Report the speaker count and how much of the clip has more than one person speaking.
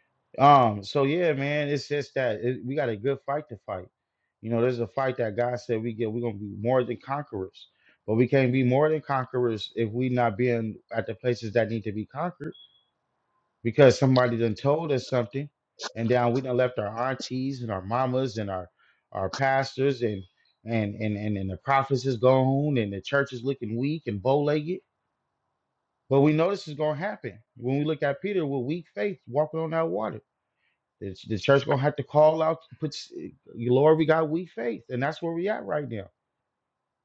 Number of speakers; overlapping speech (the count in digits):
1, no overlap